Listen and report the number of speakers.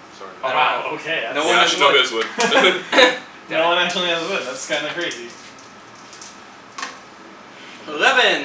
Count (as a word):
three